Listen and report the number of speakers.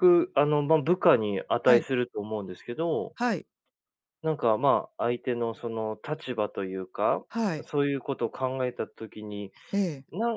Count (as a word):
two